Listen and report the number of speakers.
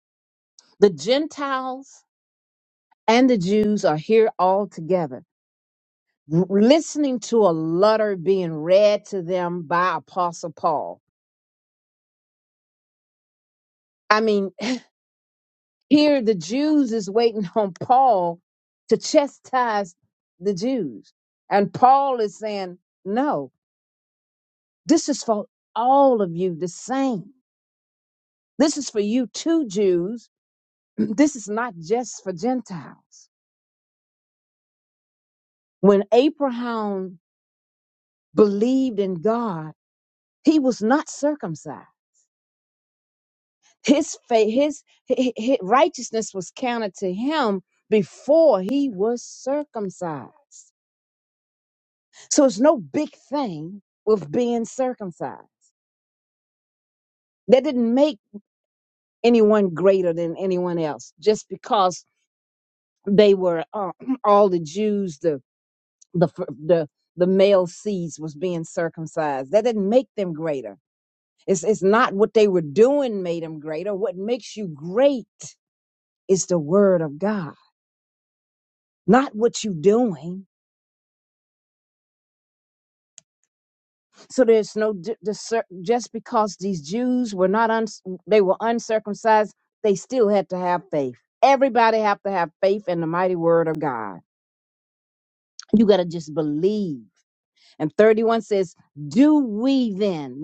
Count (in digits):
1